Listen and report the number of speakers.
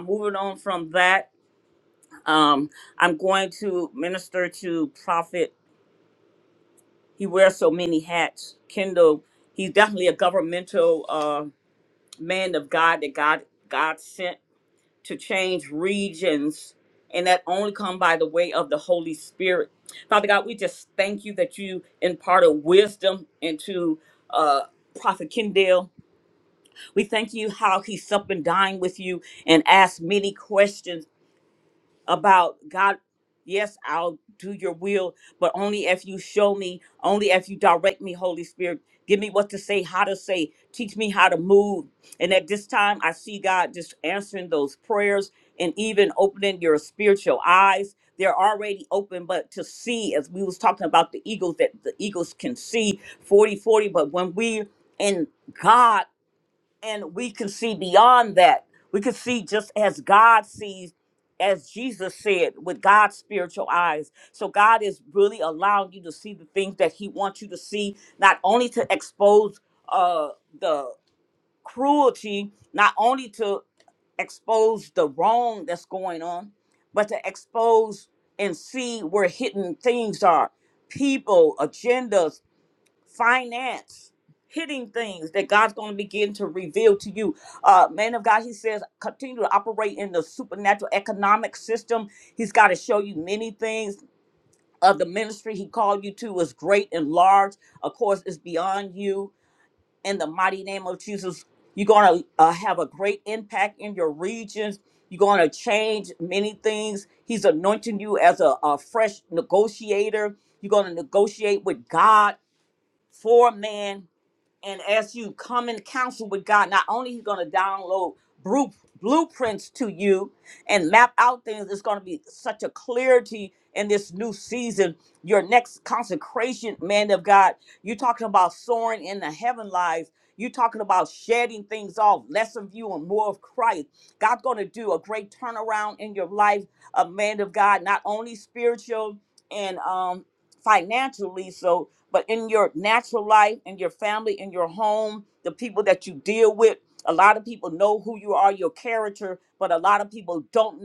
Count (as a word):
one